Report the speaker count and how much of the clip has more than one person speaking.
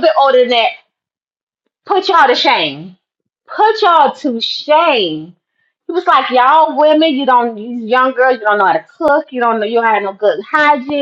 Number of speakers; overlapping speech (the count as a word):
one, no overlap